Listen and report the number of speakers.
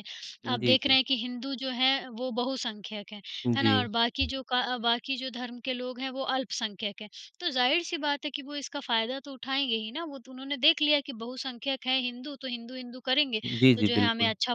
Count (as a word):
two